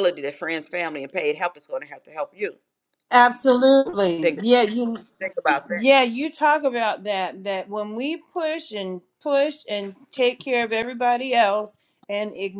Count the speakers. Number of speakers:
2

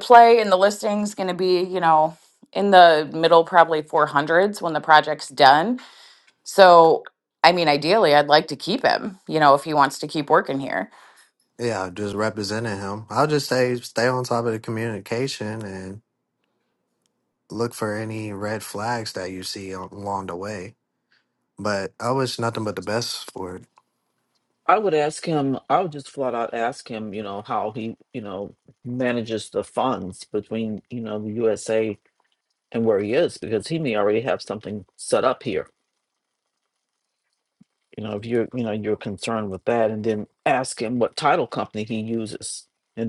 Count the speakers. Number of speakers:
3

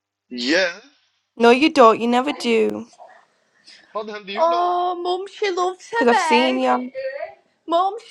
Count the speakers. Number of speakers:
3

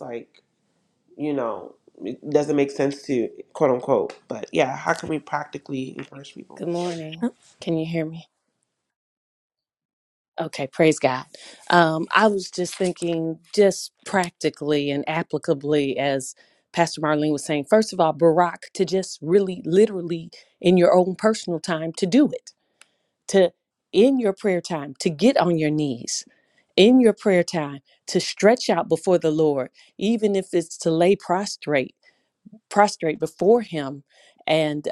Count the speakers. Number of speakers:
2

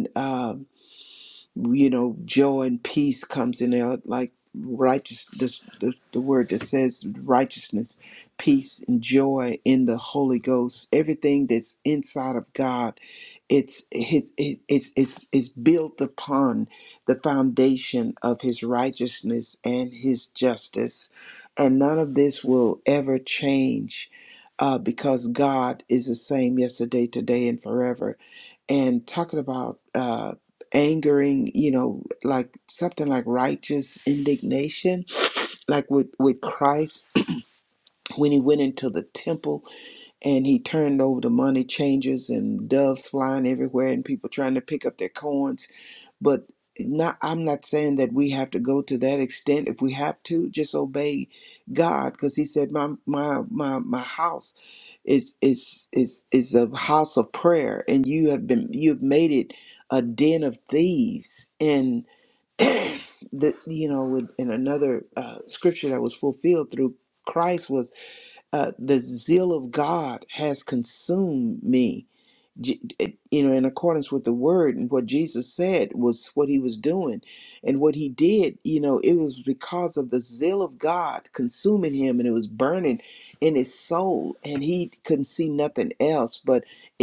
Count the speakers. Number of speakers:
1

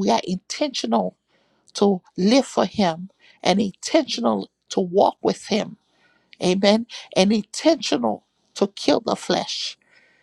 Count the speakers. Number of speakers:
1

